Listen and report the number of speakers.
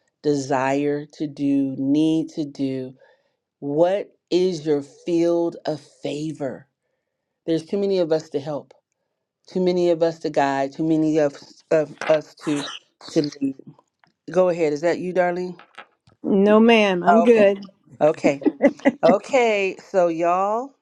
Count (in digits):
2